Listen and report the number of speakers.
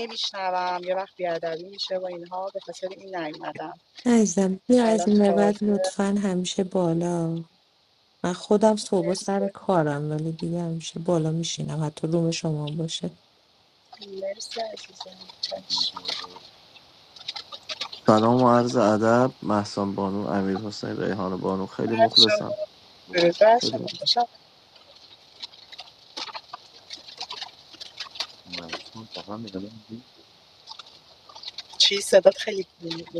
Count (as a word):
four